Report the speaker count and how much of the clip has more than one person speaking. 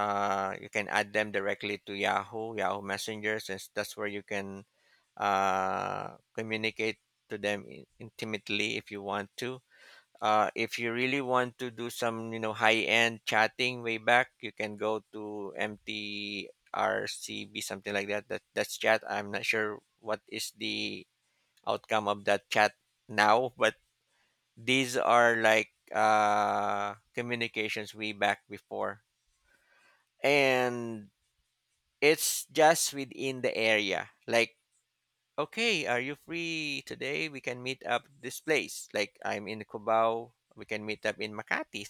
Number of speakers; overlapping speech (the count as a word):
one, no overlap